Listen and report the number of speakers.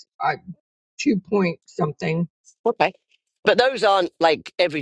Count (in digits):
2